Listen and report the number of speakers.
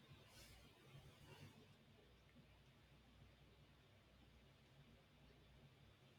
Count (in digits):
0